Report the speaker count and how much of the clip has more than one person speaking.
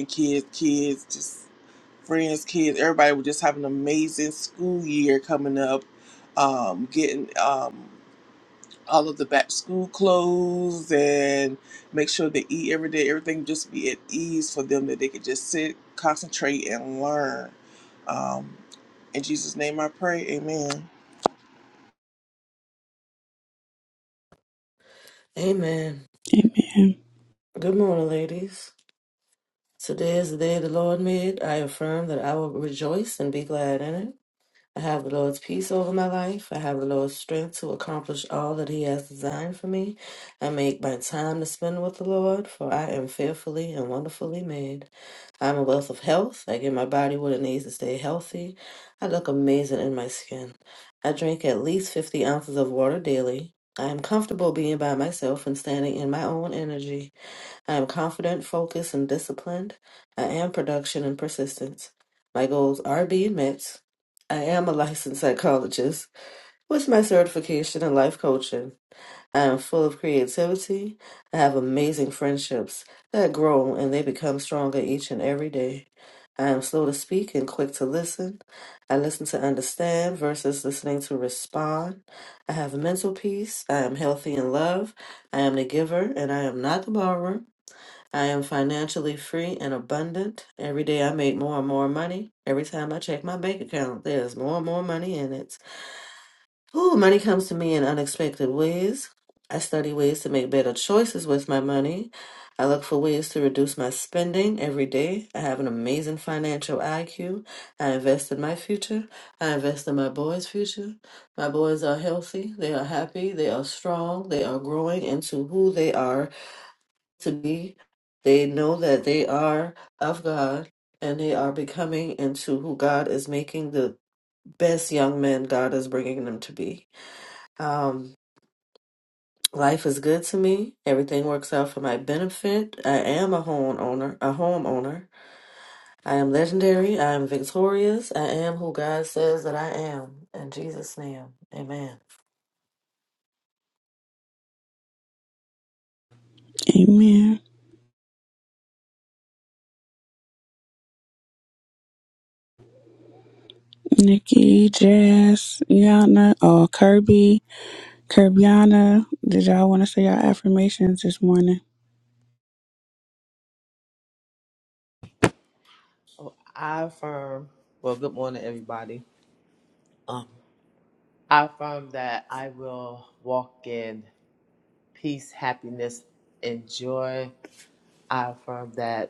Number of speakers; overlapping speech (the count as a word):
four, no overlap